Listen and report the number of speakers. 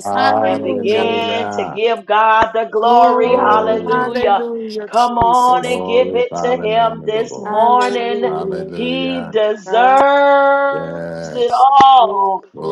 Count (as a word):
three